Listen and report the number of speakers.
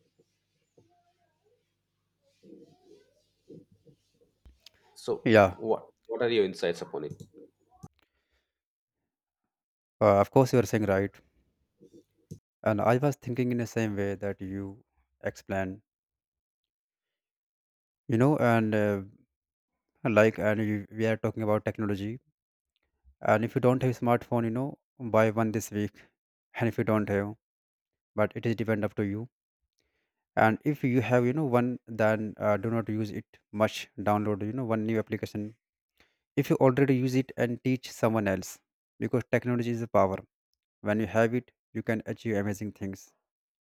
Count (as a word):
two